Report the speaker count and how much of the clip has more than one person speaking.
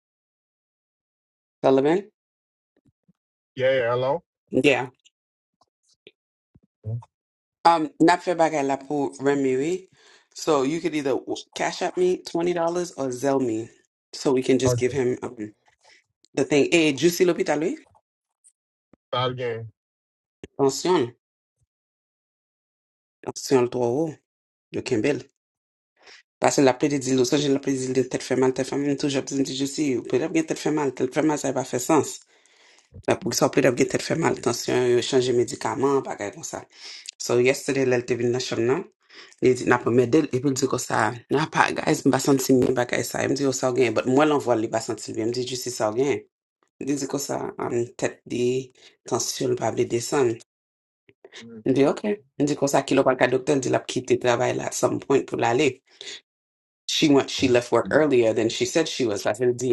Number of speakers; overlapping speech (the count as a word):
two, about 1%